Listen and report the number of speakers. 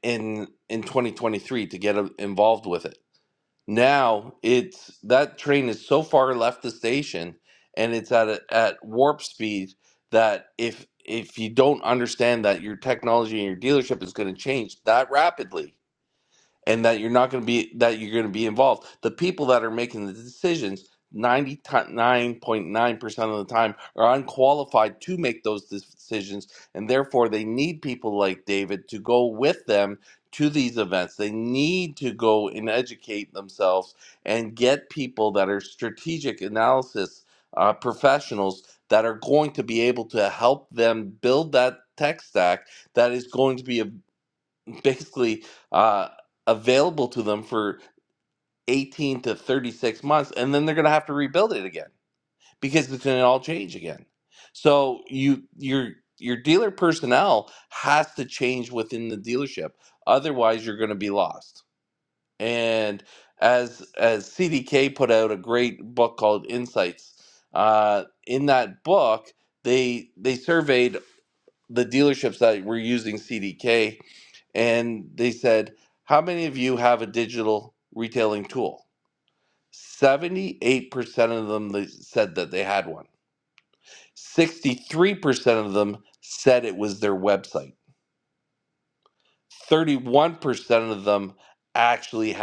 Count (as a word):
one